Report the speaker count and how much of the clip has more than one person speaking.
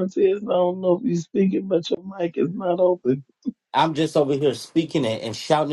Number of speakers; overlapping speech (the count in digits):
2, no overlap